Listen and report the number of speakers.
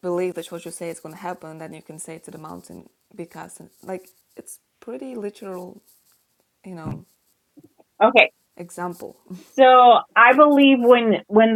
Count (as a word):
two